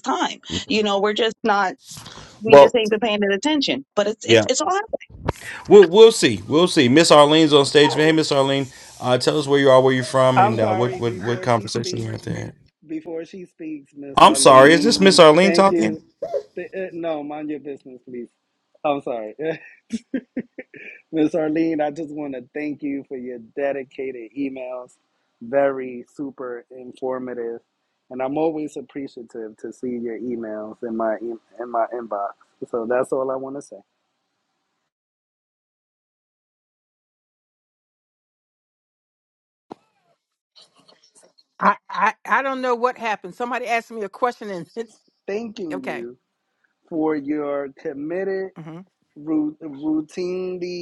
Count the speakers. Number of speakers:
four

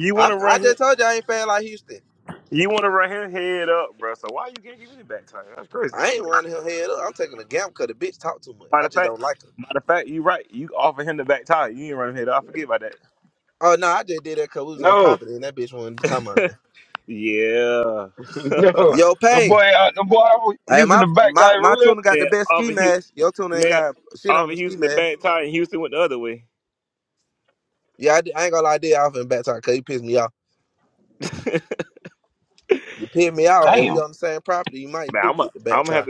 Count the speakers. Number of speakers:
three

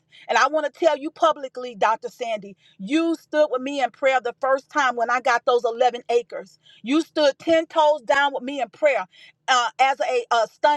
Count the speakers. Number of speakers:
one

